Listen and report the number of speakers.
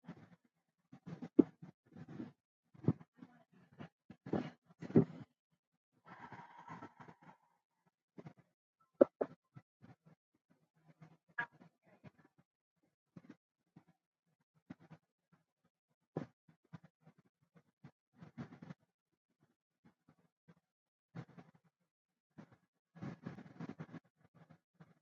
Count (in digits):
0